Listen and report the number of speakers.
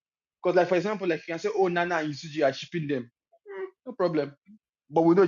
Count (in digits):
1